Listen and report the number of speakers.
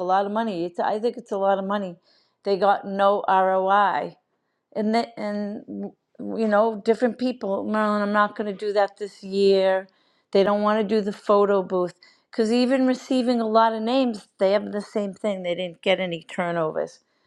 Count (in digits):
1